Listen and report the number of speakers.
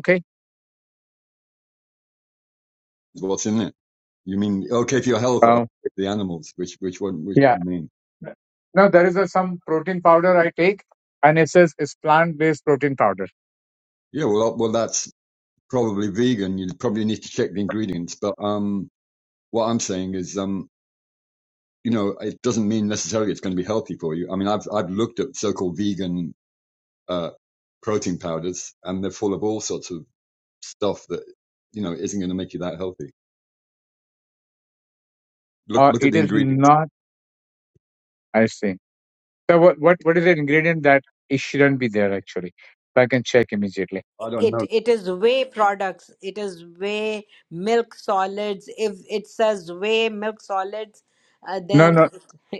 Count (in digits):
3